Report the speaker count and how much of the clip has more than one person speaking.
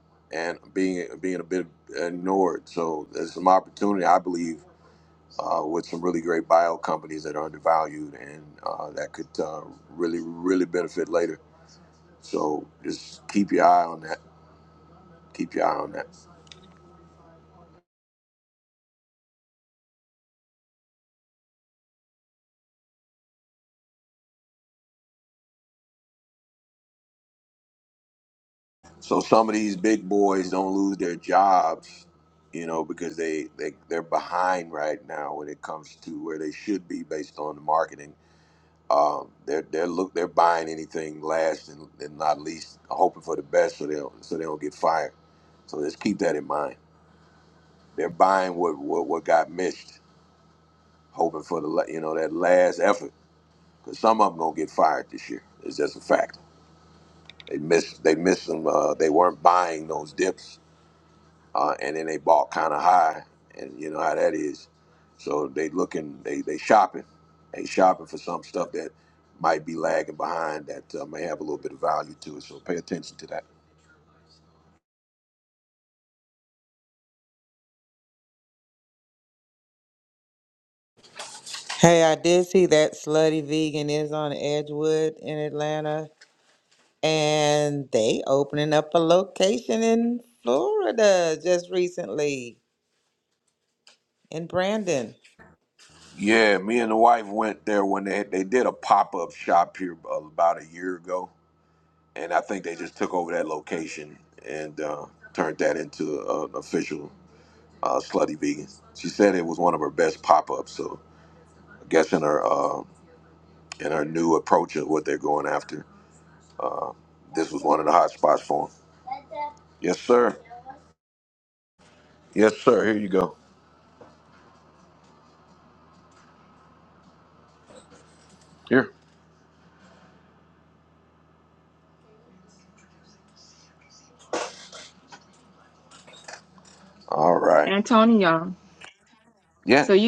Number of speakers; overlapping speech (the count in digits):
3, under 1%